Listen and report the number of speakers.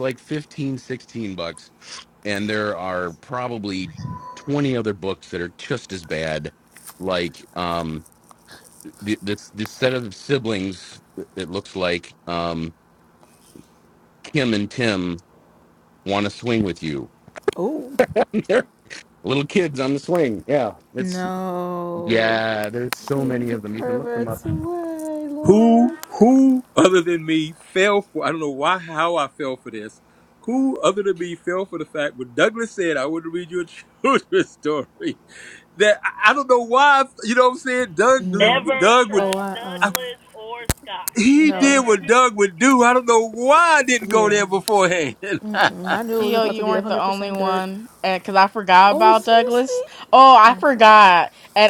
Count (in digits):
5